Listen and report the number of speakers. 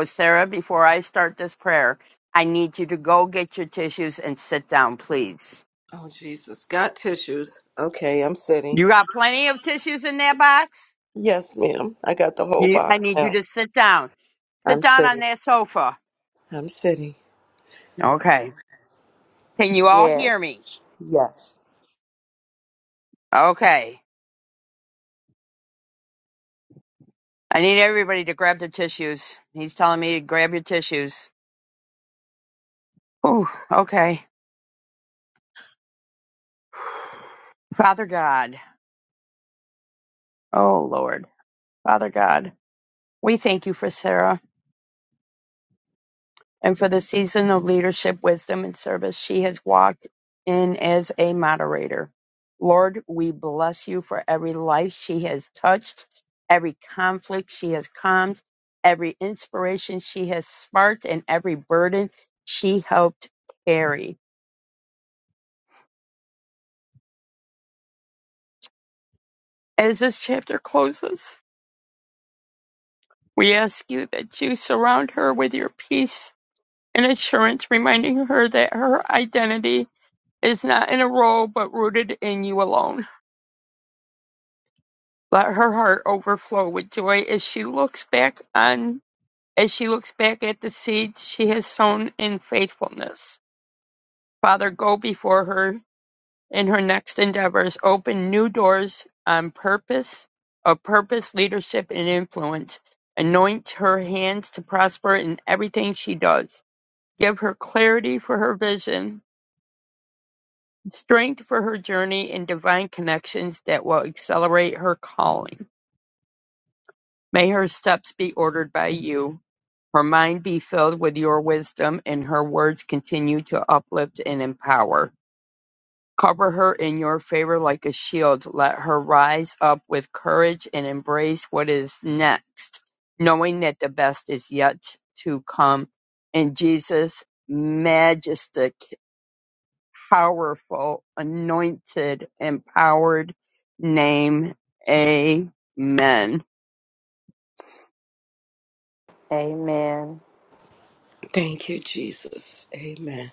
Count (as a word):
three